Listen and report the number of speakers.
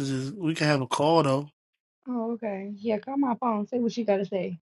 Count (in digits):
2